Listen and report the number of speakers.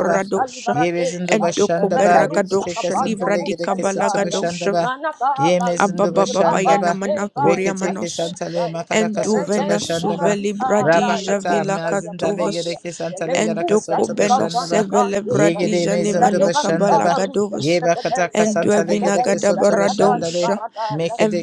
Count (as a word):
three